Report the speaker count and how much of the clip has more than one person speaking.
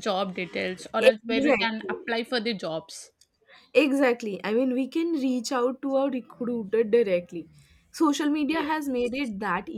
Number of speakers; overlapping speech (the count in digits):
2, about 13%